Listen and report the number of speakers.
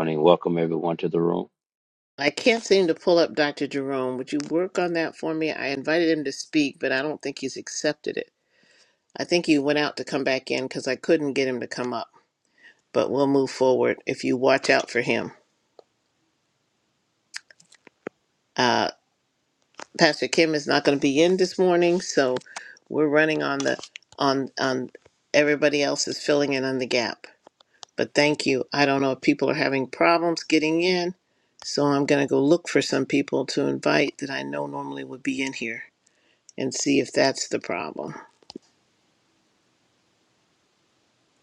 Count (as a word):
two